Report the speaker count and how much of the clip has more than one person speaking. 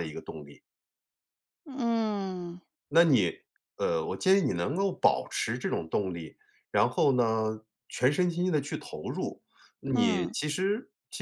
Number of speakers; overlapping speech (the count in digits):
2, about 4%